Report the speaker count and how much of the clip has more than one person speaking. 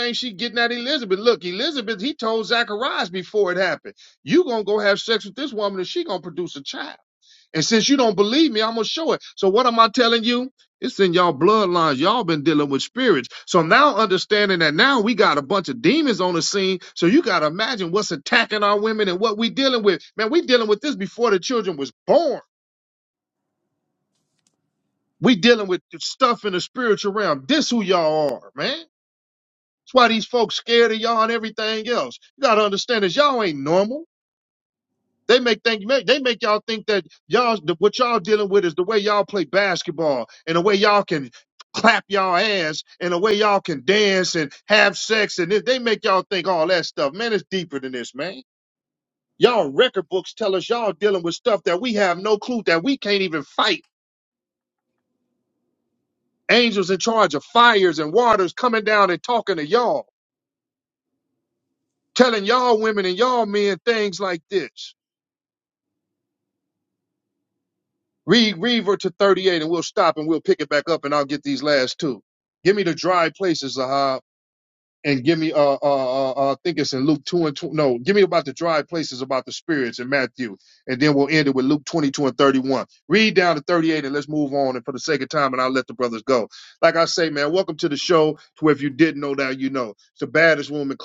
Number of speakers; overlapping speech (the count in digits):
1, no overlap